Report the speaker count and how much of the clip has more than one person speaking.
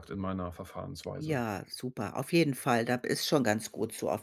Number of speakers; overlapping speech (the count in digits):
2, about 4%